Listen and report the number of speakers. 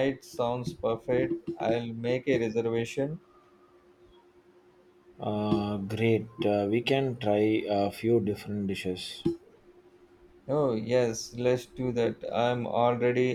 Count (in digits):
2